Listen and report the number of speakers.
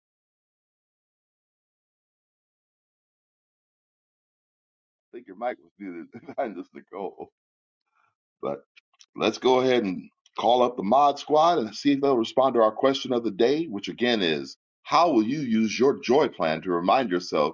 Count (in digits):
1